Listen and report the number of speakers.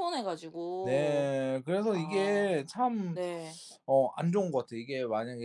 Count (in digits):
2